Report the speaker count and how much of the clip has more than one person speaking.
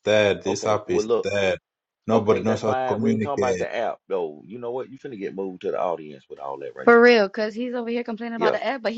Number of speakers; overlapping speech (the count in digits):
3, about 33%